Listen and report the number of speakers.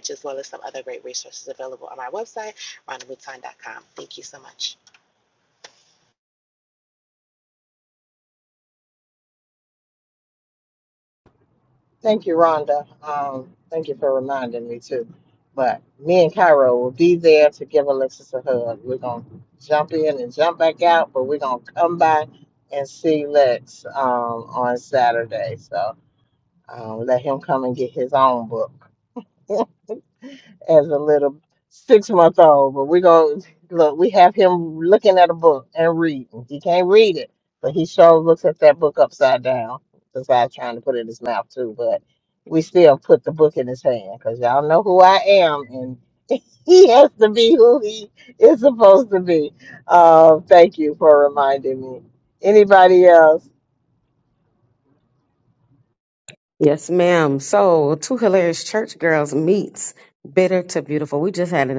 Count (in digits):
3